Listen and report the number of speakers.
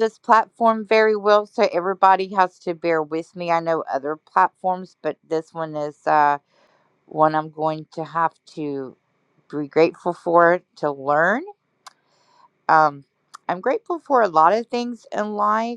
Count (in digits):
1